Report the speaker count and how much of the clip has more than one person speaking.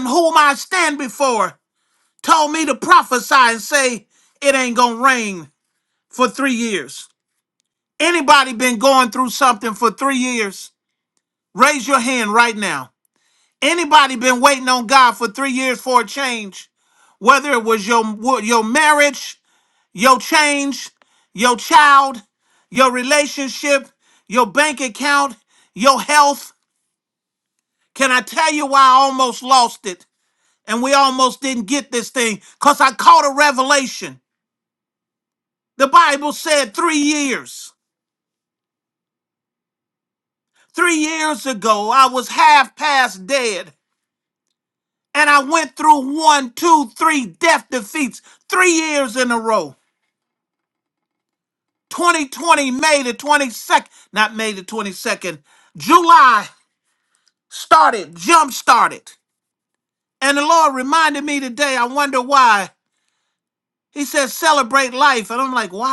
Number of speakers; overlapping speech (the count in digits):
1, no overlap